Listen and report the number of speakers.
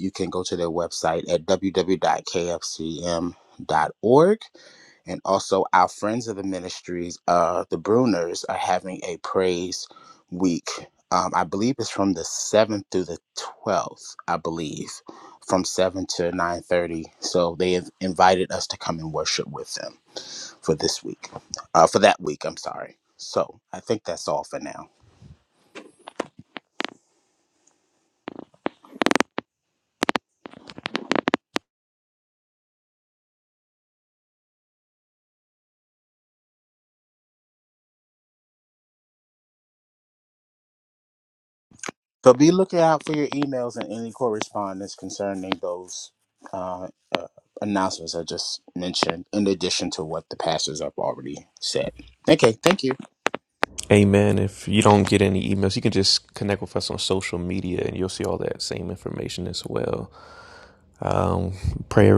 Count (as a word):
two